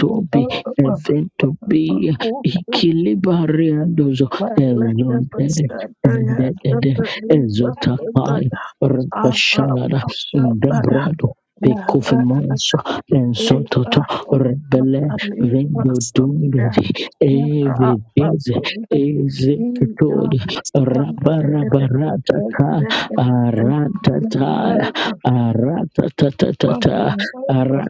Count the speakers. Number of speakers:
2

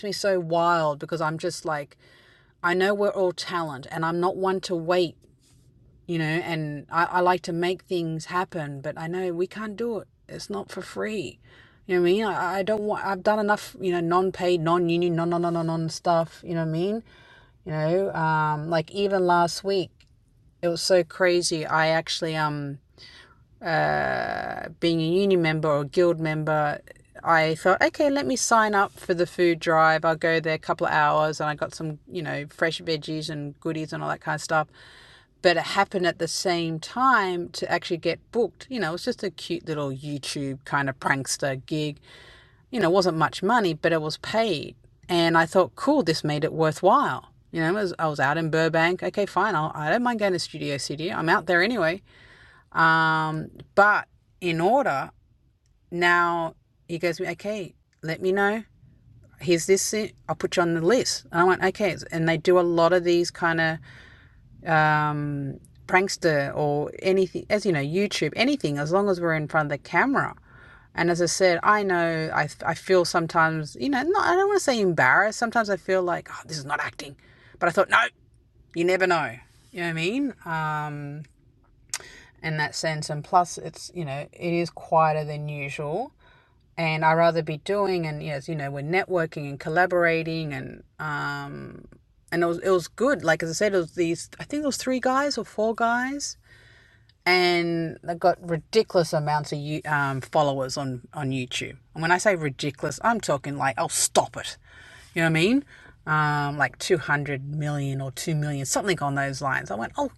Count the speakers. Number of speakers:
1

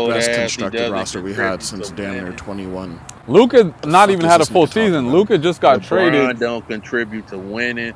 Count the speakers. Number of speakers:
3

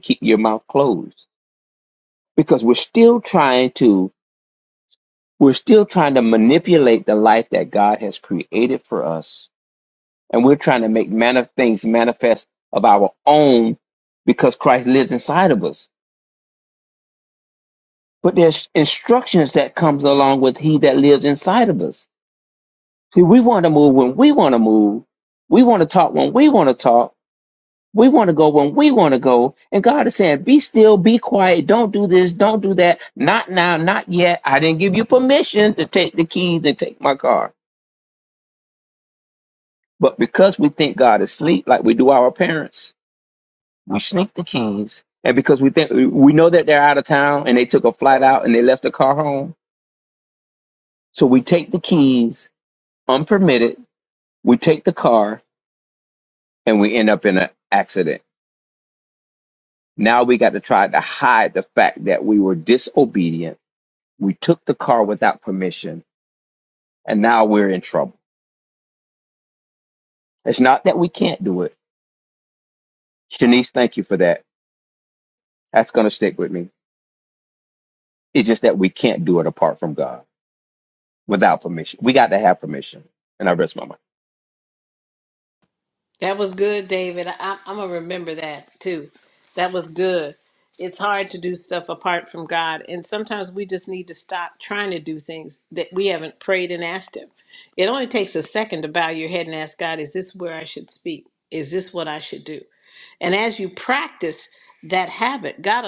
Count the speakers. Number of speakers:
2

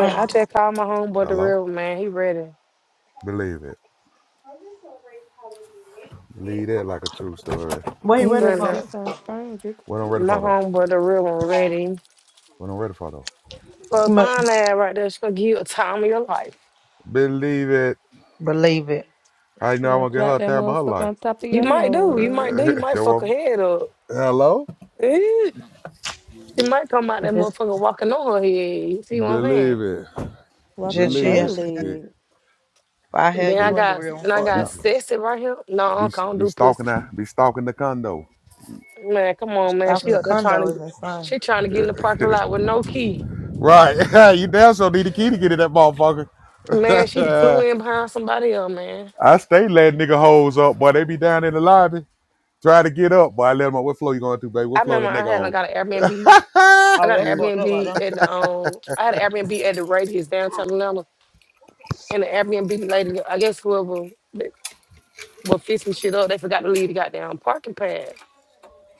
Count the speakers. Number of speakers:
4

